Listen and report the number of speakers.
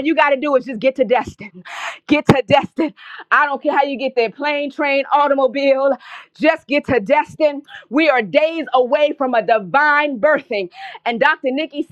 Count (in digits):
1